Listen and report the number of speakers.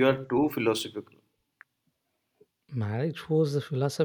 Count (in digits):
2